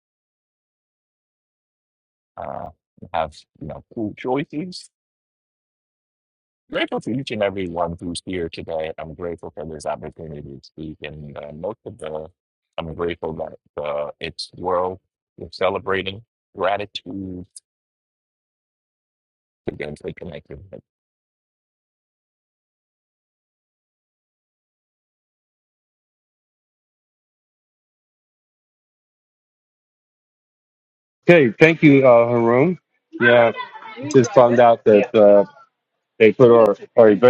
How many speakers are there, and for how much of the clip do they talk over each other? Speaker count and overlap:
two, no overlap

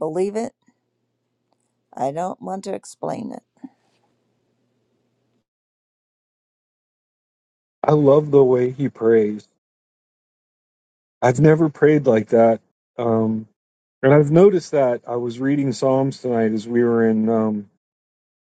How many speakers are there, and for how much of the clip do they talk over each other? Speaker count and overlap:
two, no overlap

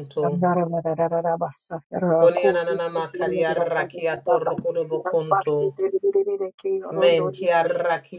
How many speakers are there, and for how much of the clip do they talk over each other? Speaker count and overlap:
two, about 51%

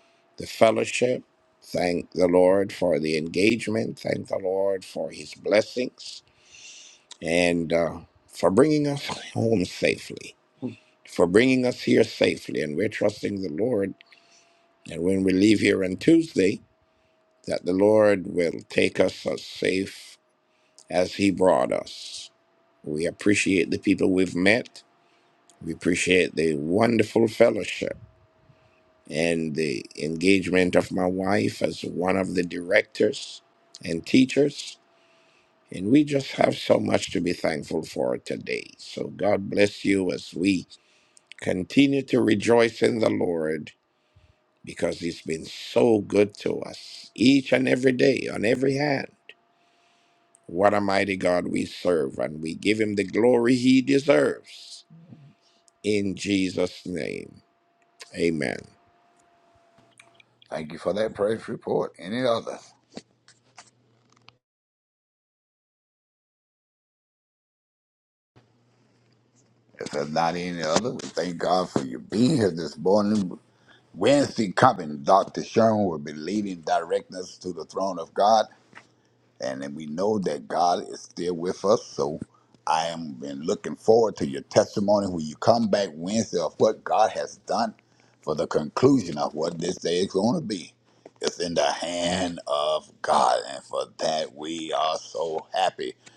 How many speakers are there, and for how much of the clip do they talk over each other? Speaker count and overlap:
two, no overlap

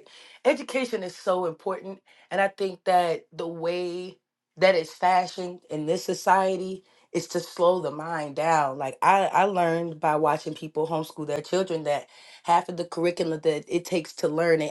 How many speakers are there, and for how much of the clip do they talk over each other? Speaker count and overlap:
one, no overlap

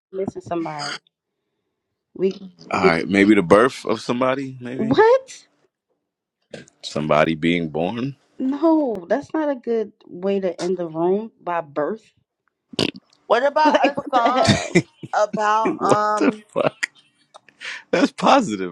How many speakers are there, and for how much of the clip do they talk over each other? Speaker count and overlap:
three, about 9%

